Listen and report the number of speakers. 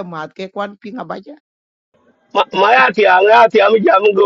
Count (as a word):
two